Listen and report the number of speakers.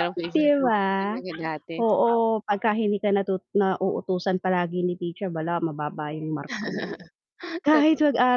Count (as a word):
two